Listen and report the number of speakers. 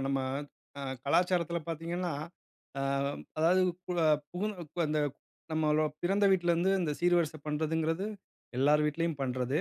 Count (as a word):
one